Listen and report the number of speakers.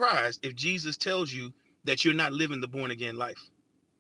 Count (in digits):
1